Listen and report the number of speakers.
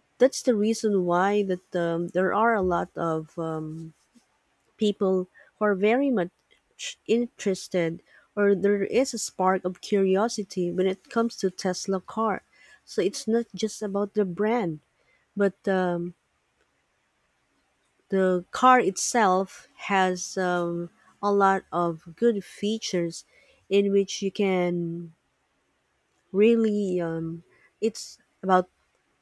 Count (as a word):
one